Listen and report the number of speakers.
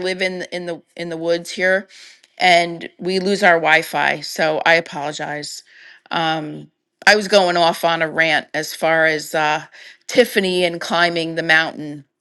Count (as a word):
one